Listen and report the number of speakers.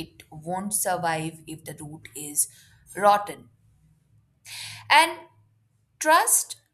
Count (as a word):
one